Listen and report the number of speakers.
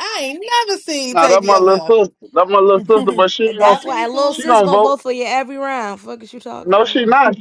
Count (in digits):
3